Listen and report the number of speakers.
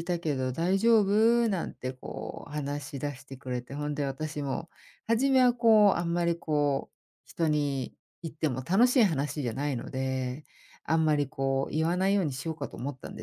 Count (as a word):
one